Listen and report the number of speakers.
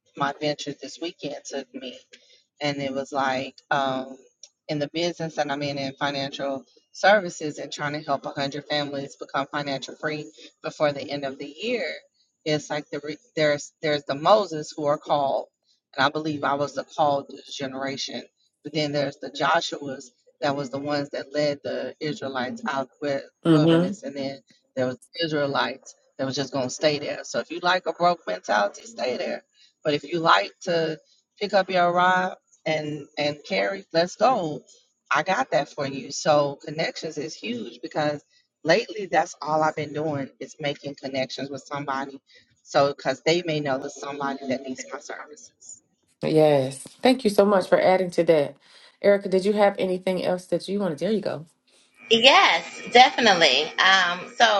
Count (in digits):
3